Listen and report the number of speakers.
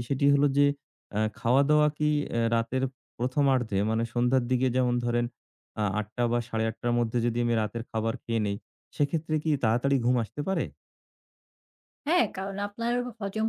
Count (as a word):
two